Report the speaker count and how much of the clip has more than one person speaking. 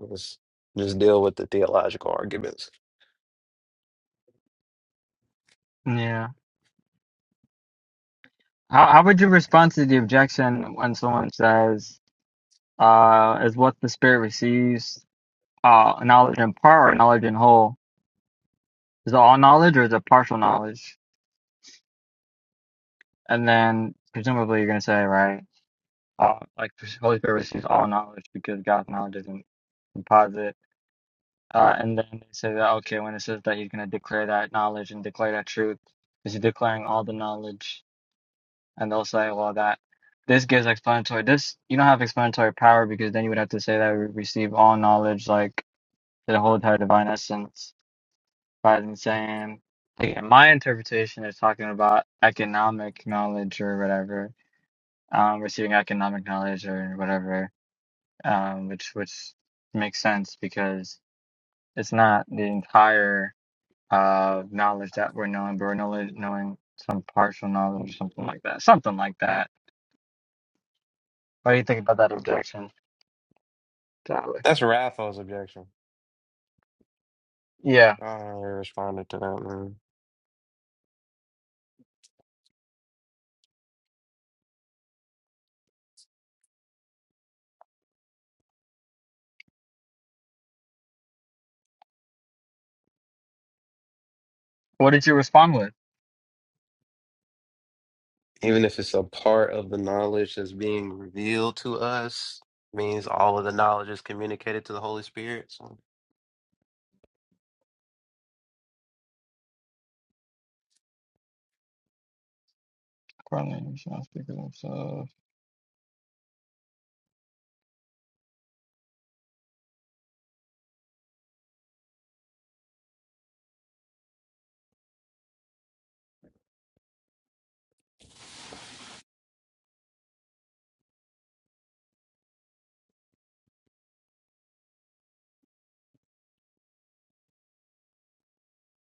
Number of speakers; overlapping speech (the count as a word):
two, no overlap